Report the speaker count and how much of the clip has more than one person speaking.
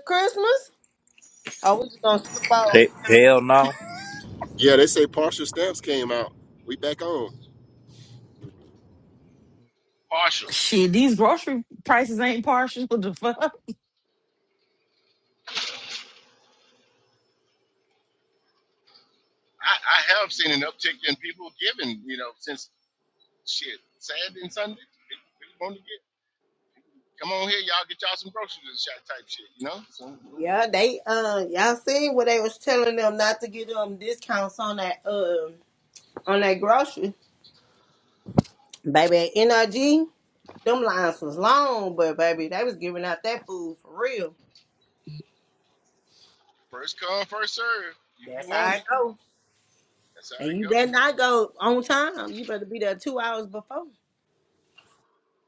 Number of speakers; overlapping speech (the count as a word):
five, about 2%